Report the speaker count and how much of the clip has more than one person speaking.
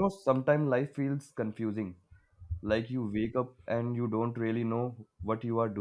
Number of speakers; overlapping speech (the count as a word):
one, no overlap